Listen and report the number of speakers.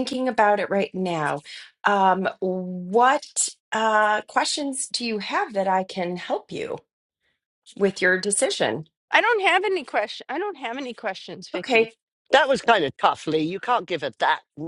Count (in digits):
3